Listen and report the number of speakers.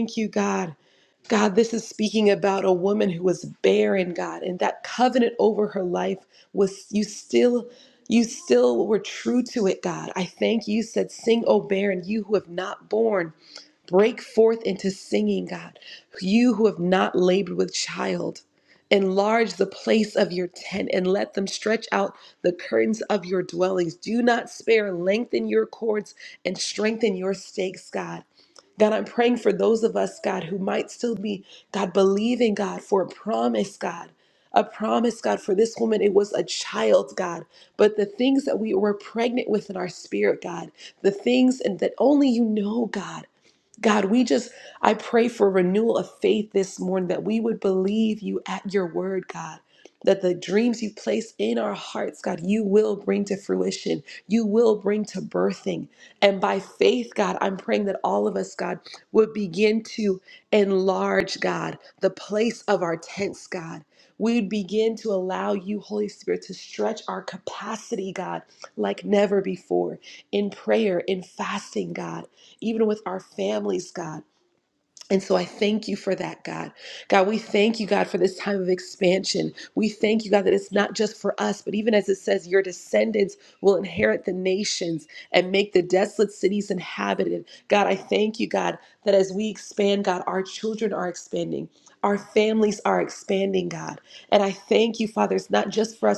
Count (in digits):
1